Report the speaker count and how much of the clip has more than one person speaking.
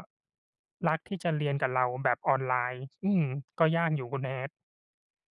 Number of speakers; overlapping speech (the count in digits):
1, no overlap